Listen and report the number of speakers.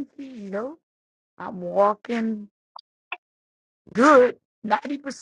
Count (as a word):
one